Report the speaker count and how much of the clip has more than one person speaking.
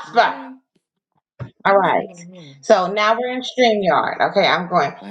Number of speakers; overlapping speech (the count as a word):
two, about 14%